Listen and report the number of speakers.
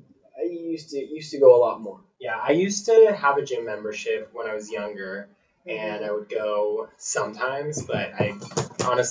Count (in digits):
2